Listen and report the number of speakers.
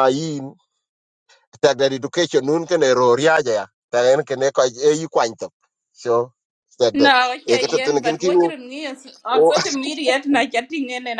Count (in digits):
2